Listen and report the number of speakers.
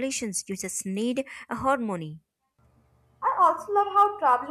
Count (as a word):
two